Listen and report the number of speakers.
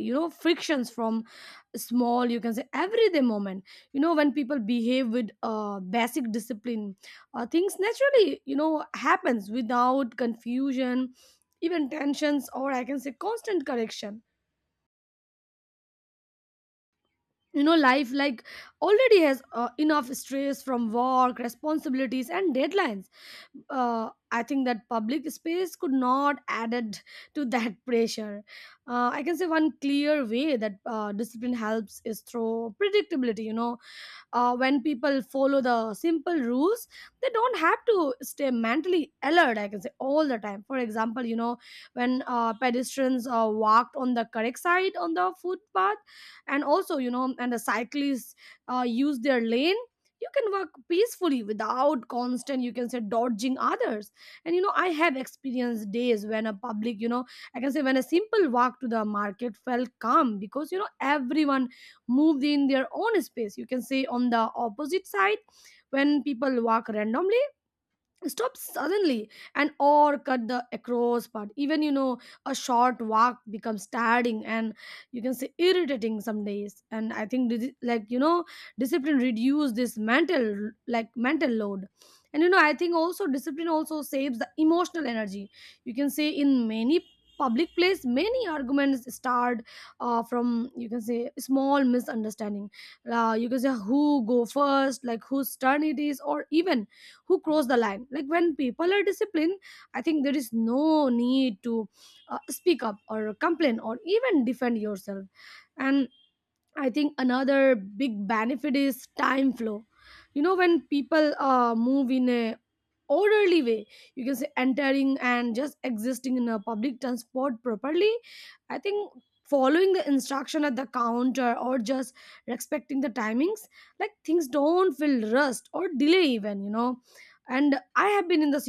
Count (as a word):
one